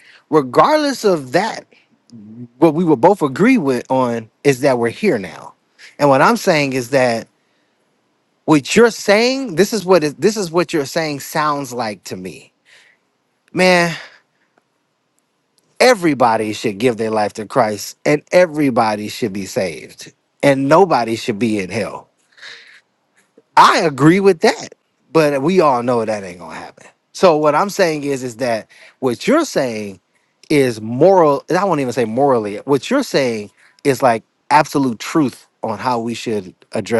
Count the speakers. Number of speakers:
one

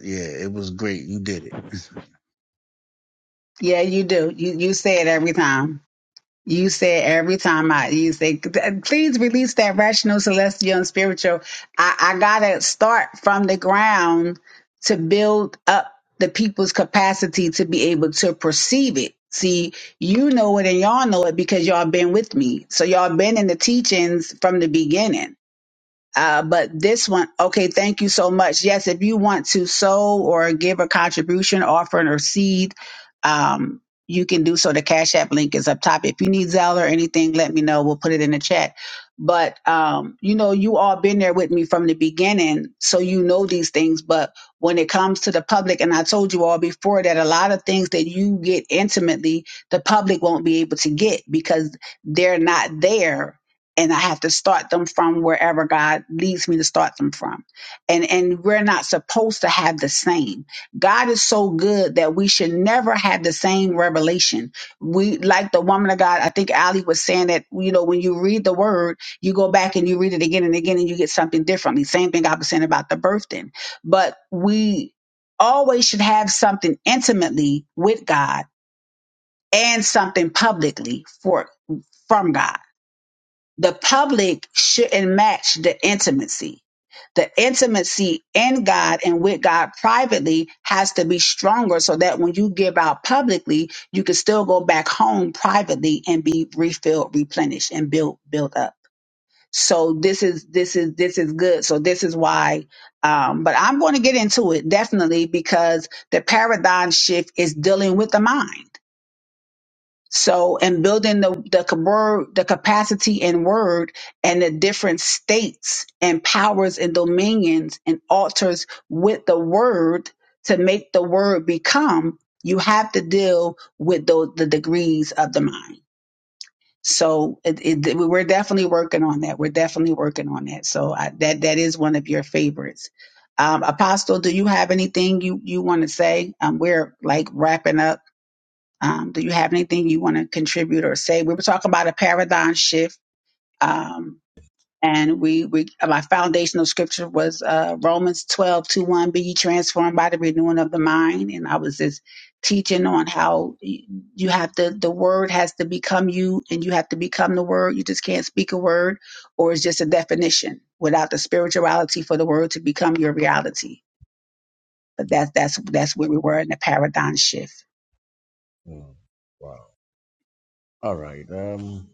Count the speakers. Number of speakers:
three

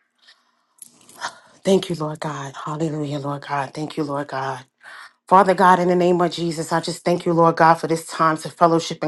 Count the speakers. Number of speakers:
one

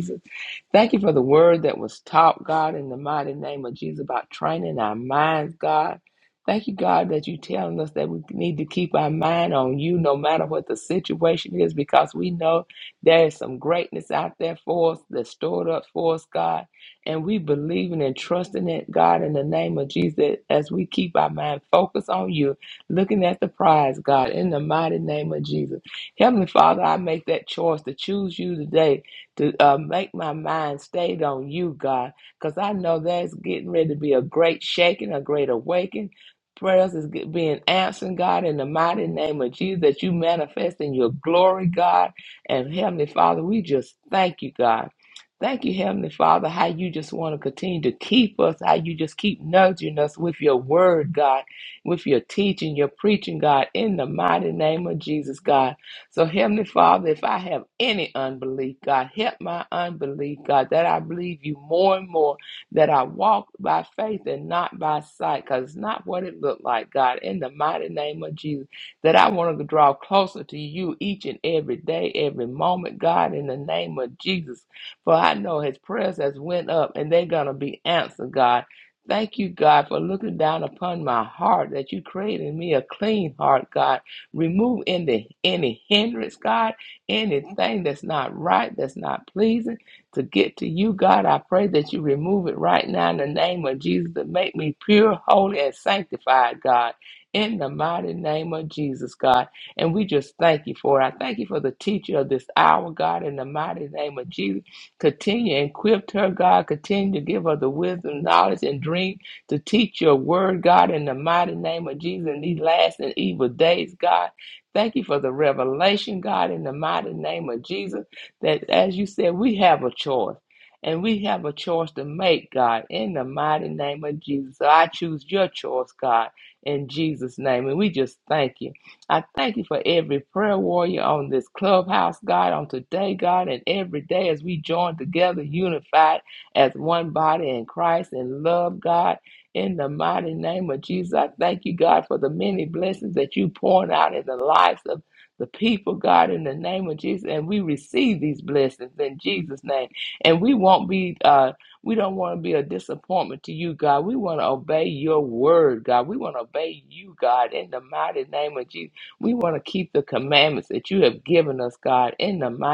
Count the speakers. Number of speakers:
one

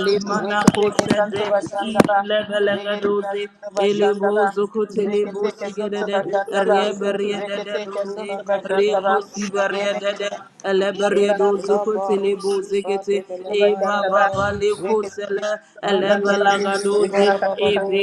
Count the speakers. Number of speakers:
three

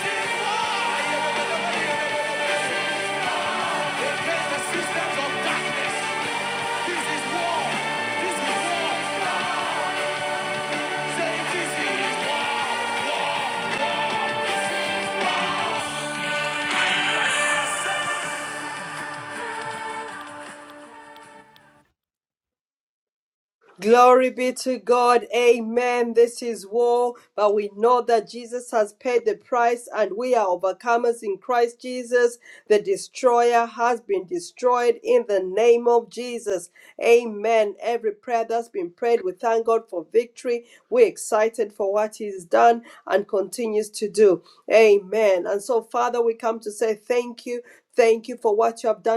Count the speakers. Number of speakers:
two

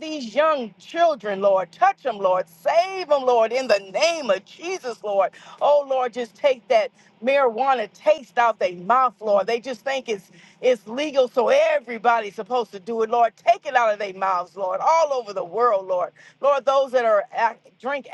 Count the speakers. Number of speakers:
one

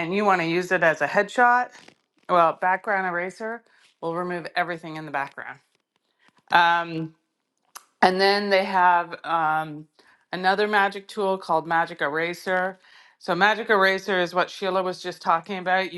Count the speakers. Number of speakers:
one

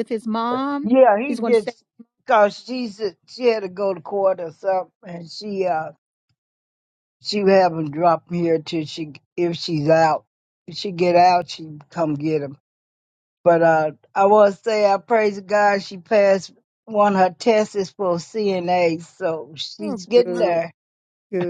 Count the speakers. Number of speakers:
two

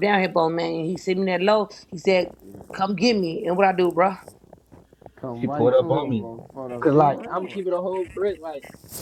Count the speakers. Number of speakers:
three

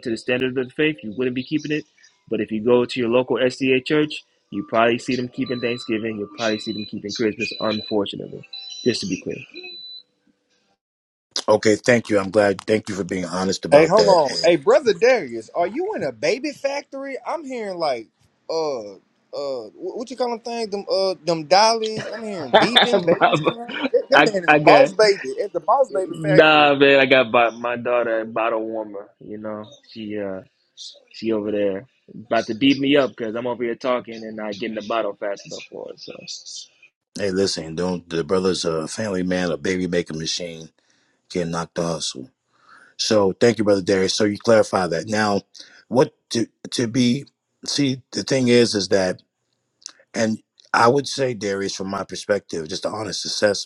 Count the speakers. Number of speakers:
three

